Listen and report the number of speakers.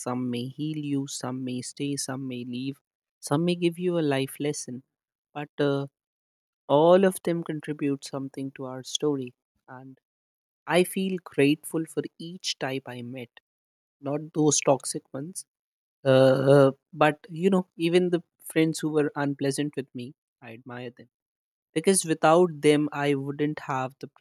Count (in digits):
1